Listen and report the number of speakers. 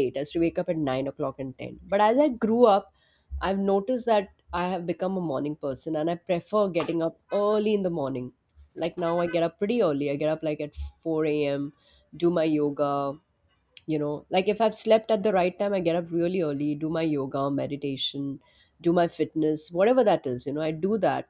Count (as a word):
one